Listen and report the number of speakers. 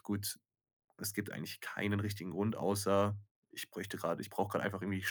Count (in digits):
1